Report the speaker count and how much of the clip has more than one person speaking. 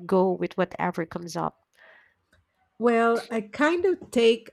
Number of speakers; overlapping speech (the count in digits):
2, no overlap